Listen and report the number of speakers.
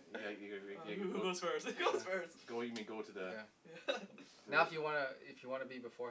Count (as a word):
three